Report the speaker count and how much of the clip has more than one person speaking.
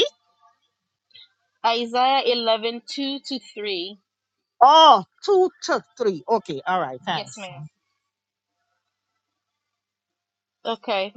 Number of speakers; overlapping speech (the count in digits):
2, about 1%